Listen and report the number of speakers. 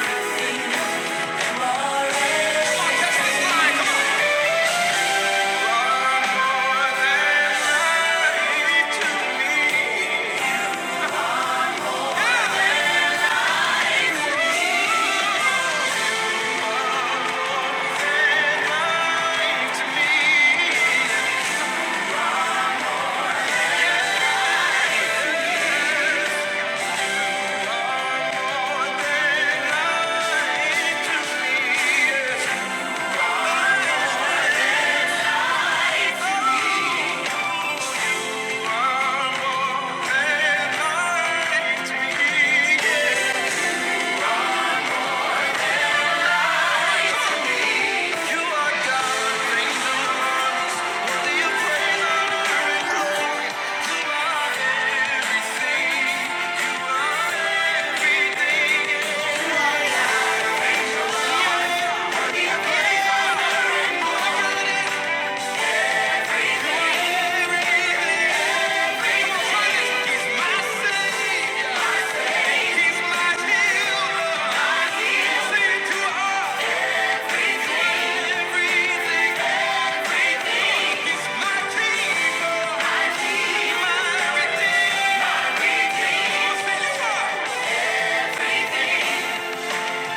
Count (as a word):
zero